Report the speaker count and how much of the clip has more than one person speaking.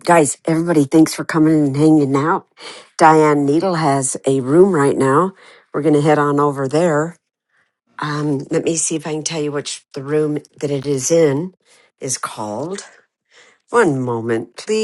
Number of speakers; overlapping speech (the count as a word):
one, no overlap